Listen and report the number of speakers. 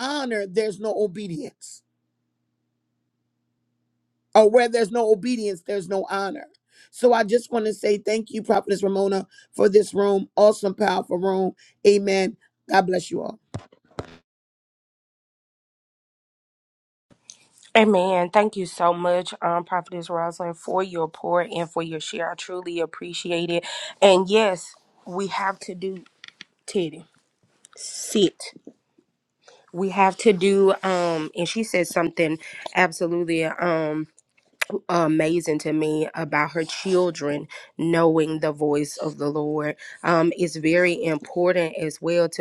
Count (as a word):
two